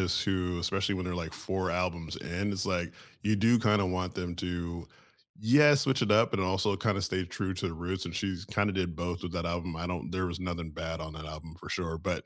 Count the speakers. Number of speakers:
one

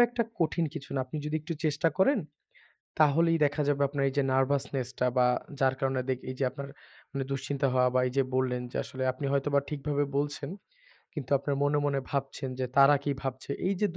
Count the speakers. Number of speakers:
one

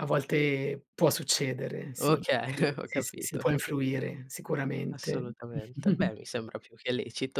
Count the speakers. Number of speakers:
two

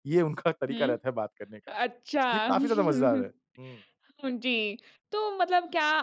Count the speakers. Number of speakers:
two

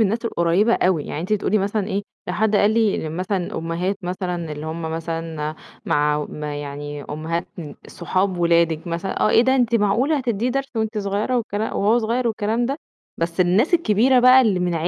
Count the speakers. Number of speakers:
one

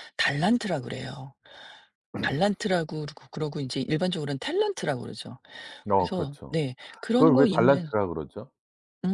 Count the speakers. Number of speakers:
two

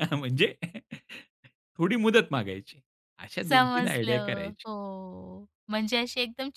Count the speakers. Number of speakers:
two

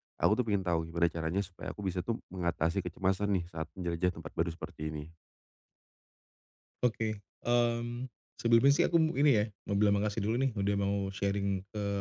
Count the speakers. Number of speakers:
two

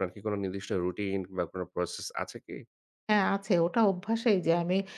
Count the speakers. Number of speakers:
two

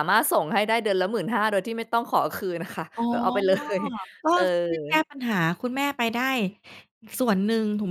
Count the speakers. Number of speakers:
two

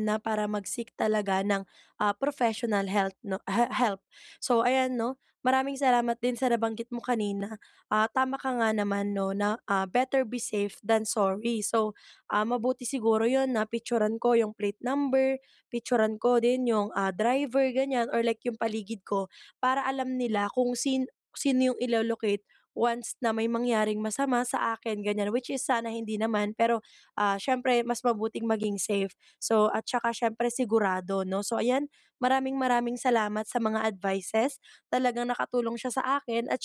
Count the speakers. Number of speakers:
one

